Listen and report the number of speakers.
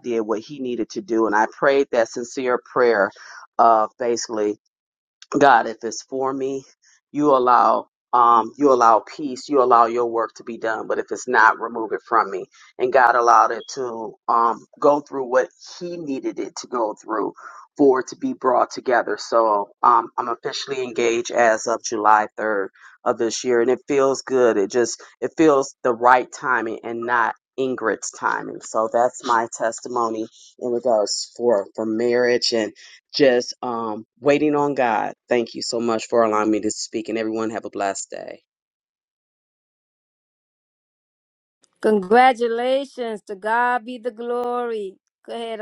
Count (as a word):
two